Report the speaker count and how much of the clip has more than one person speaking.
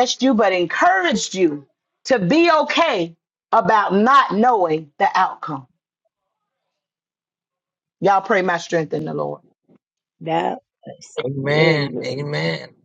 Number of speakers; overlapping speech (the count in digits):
3, about 6%